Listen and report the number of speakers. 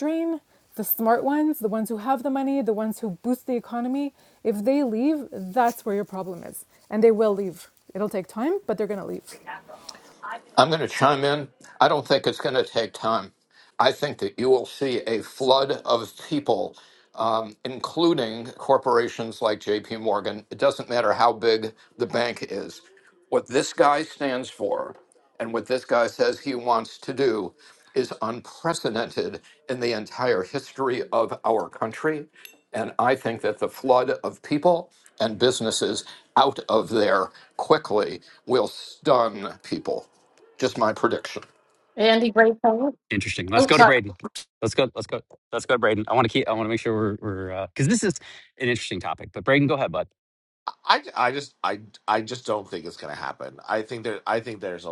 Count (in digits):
5